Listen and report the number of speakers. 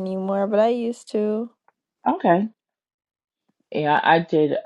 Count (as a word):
two